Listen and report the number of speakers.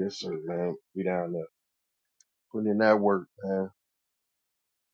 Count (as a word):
one